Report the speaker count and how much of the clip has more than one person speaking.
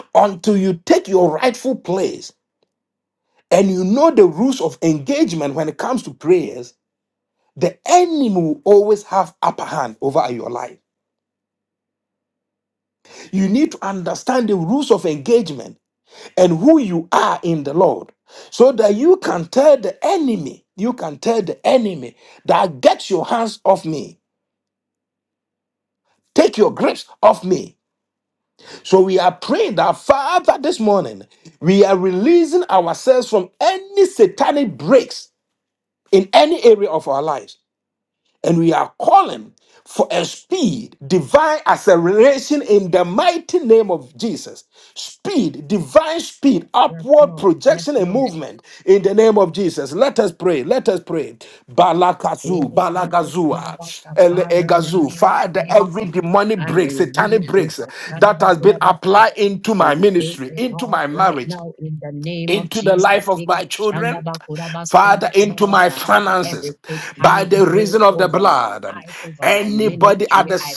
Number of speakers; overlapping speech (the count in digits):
2, about 22%